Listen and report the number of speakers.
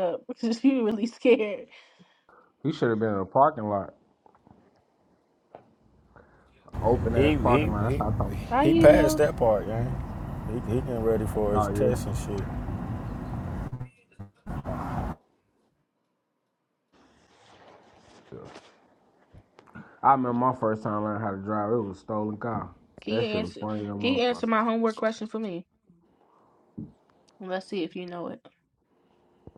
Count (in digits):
3